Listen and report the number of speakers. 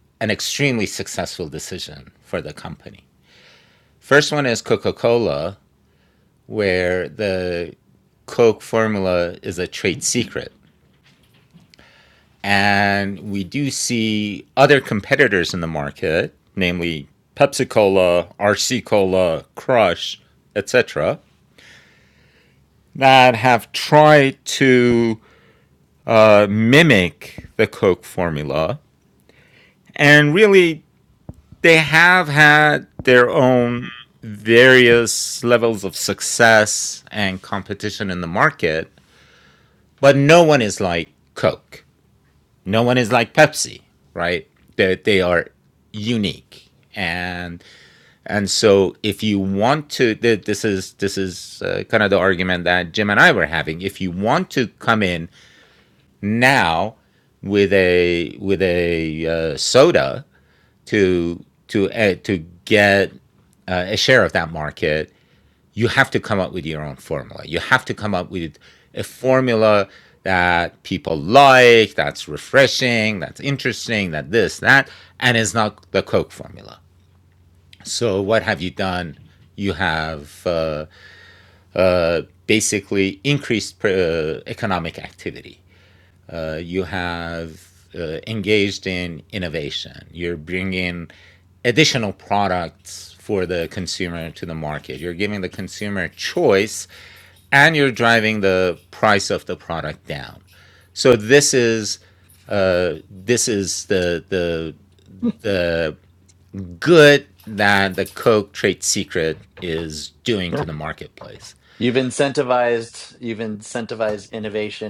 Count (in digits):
2